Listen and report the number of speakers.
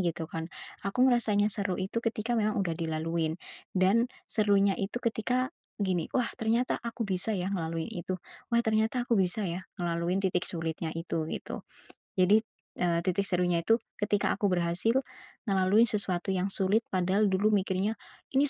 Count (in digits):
1